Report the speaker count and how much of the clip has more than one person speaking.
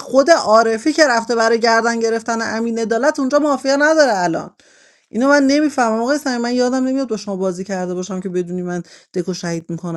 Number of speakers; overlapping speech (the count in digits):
1, no overlap